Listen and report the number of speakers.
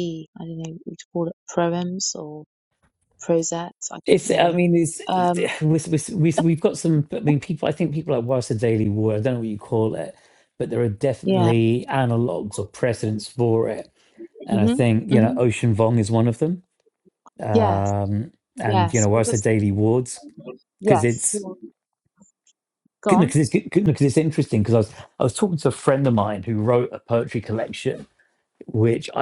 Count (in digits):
2